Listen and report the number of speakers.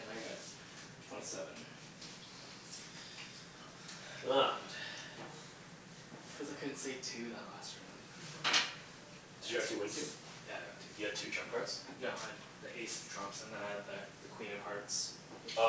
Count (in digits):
2